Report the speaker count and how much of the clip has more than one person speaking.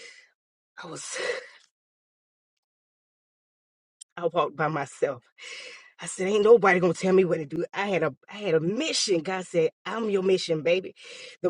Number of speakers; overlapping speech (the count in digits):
1, no overlap